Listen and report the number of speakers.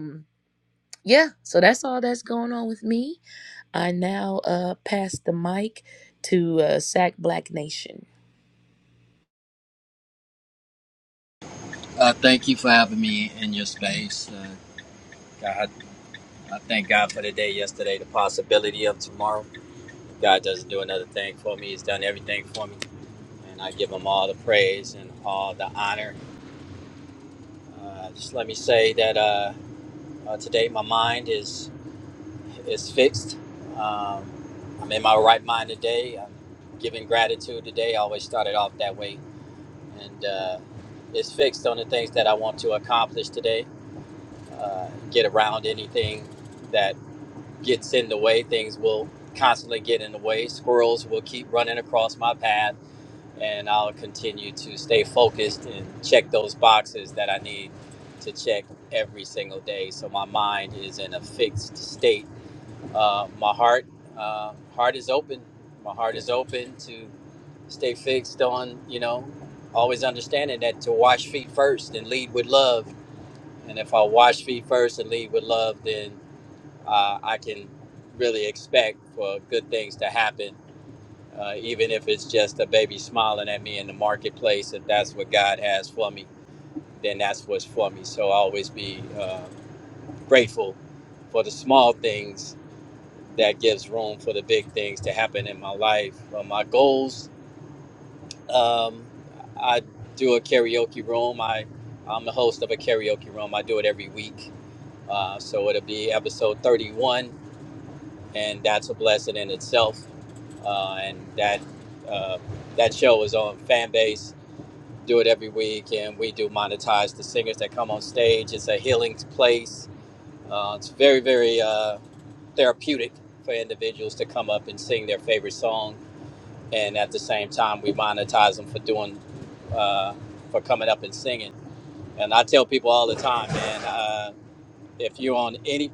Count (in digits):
2